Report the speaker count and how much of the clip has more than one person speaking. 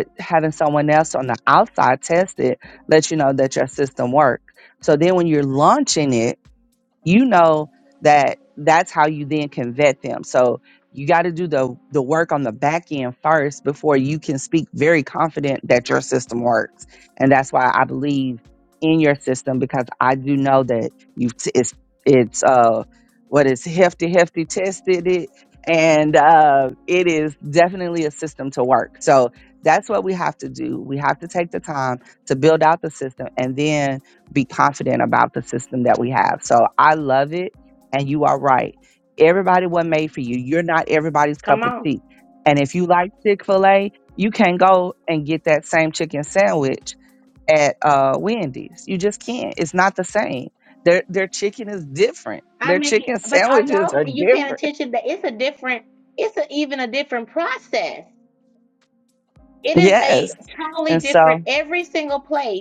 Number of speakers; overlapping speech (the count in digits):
2, about 6%